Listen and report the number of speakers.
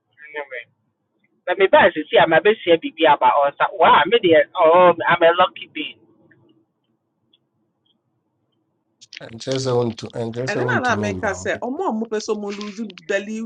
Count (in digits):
3